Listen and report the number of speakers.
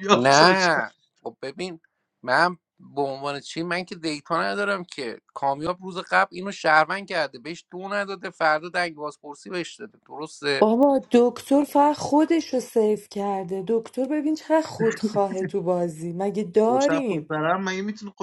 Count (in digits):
3